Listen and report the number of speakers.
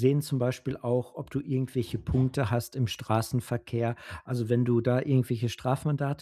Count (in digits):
1